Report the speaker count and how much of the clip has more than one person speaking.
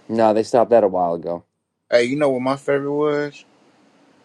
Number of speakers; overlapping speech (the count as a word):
two, no overlap